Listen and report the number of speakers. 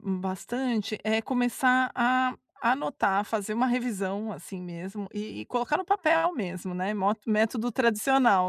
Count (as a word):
one